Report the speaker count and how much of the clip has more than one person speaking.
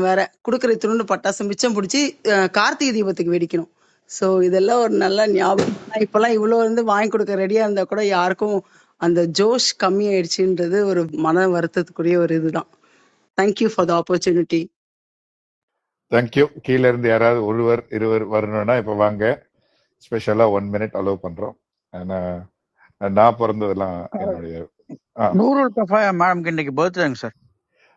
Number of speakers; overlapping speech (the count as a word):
three, under 1%